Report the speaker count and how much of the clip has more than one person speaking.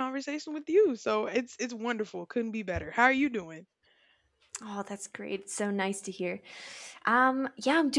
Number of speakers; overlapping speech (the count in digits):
2, no overlap